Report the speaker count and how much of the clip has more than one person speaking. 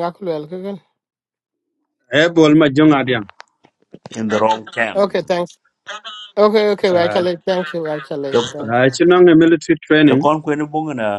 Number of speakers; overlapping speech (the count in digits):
3, about 10%